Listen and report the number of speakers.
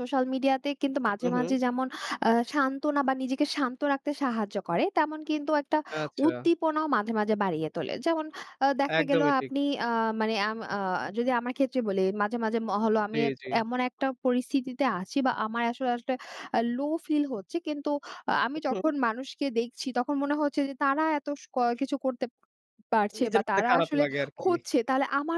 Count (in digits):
2